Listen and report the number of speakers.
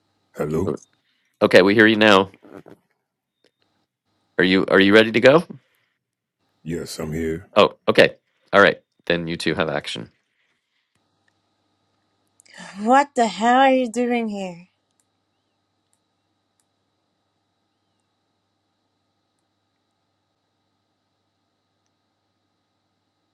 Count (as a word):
three